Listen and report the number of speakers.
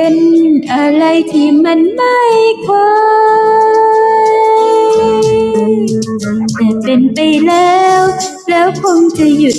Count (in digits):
1